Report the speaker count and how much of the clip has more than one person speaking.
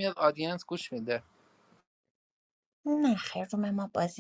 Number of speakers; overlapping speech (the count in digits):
2, no overlap